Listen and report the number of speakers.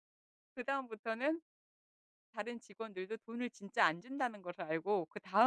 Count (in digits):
1